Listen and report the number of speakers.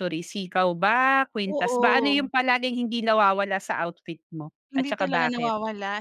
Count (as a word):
two